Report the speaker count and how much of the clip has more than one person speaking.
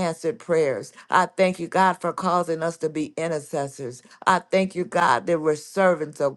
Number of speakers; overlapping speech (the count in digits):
1, no overlap